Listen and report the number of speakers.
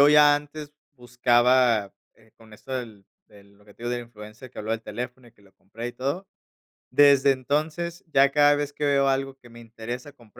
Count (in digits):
1